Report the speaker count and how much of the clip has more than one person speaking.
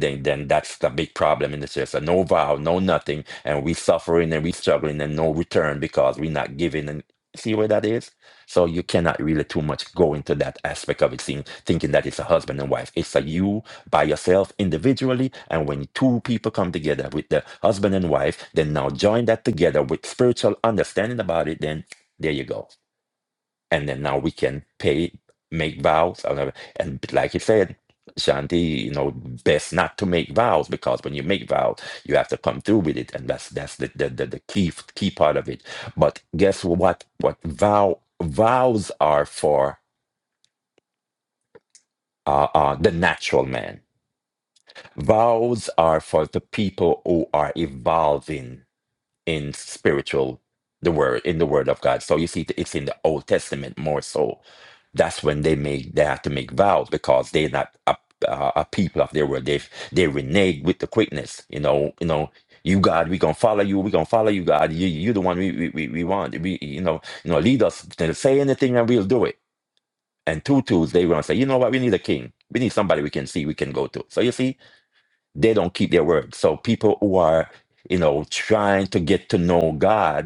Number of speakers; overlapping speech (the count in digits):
1, no overlap